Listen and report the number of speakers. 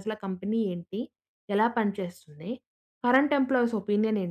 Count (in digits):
1